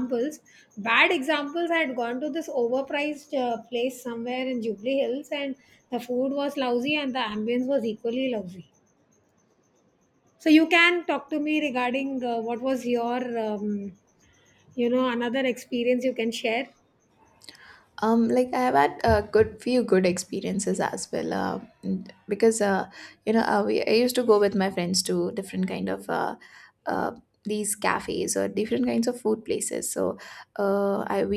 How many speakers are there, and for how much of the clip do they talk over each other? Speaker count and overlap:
2, no overlap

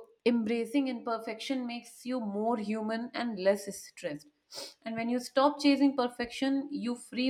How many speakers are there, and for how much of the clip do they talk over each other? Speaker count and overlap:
1, no overlap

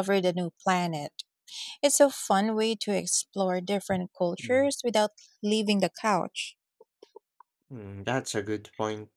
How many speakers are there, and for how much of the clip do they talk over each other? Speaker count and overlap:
2, about 2%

